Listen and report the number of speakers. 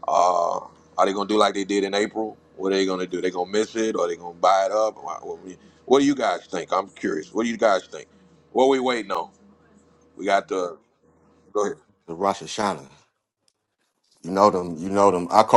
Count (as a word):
two